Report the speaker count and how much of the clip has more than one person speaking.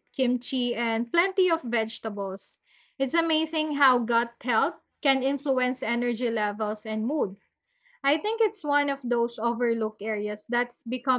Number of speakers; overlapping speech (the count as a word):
one, no overlap